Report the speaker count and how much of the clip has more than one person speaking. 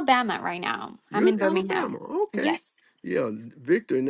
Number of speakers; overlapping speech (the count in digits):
2, about 25%